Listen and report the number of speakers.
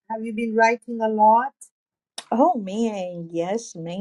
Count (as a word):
two